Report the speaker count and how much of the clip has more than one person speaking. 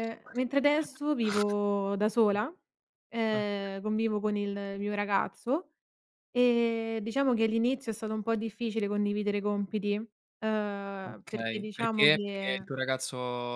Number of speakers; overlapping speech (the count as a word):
two, about 12%